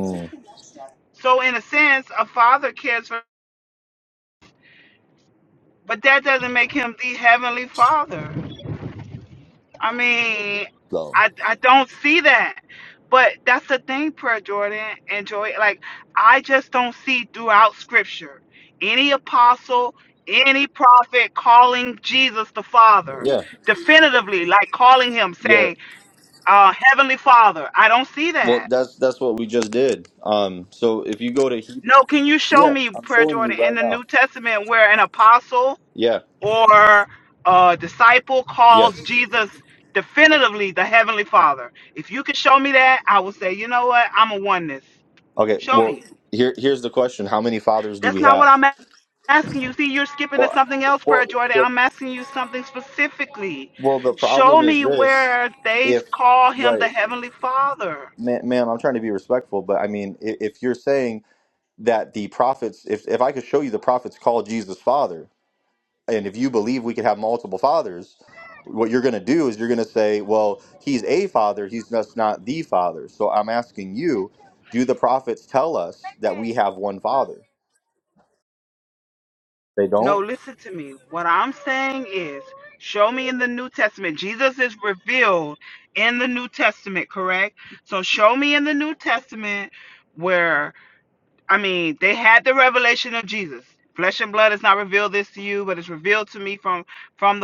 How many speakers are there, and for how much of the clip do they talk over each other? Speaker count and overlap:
2, about 6%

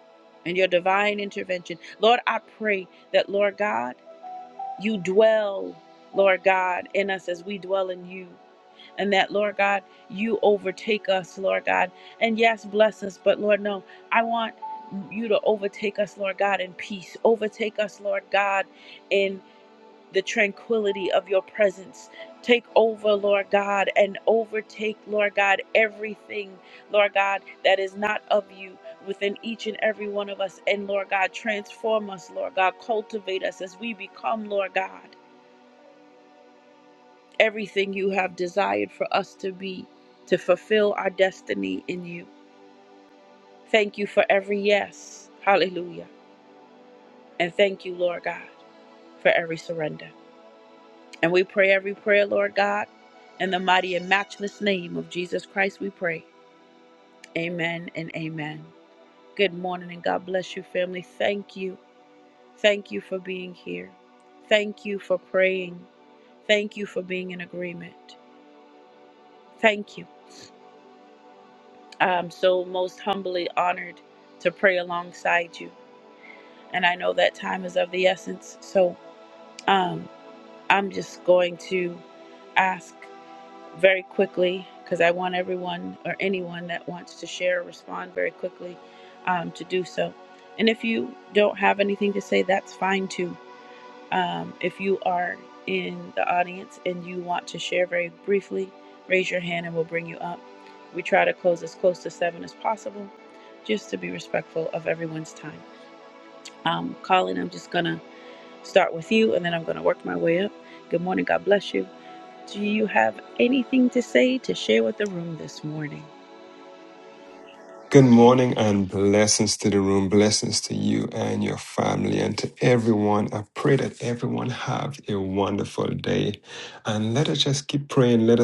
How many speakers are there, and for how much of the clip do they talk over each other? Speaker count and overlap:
2, no overlap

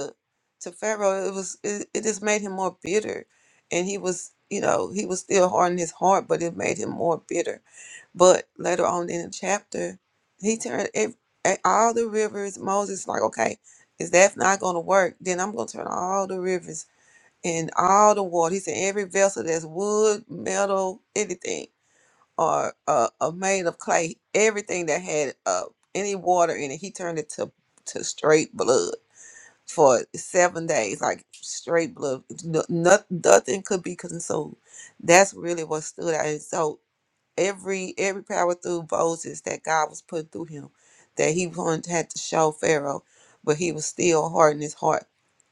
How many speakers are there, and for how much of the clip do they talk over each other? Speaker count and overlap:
1, no overlap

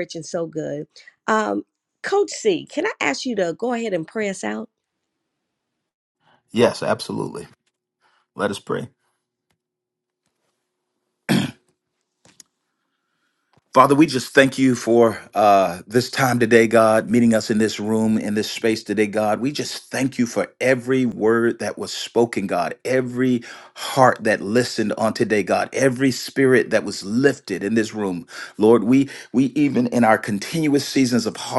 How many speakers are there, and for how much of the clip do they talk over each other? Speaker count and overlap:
2, no overlap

